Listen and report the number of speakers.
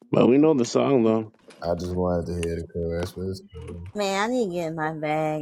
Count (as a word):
three